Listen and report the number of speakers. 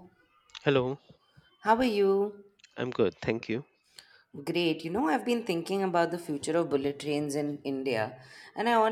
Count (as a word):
two